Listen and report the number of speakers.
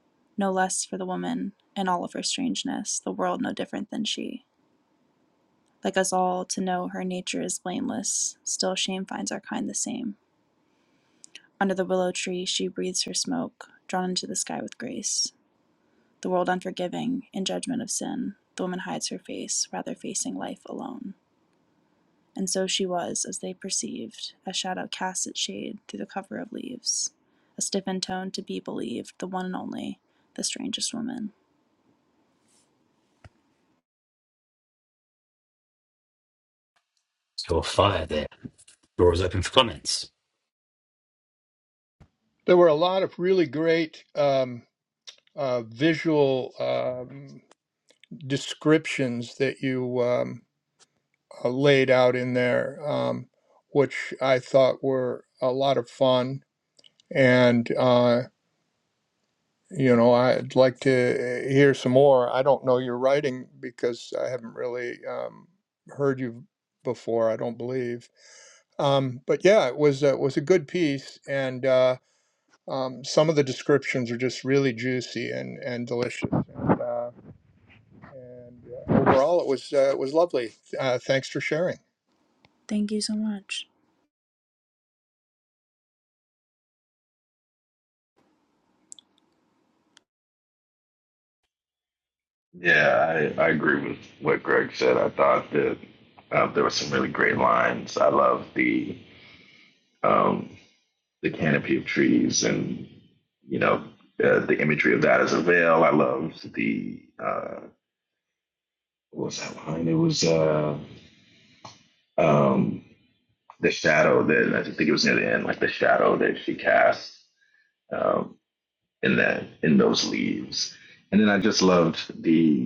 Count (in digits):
4